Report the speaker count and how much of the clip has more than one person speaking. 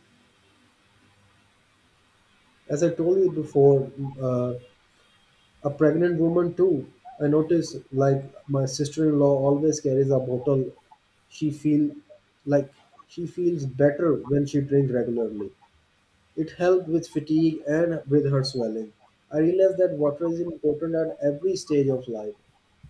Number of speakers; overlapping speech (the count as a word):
one, no overlap